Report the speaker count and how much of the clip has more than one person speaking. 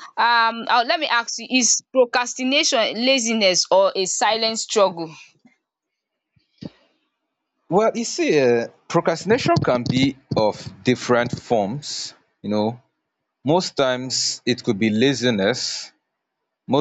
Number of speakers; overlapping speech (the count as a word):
two, no overlap